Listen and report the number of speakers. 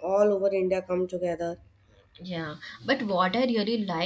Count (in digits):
2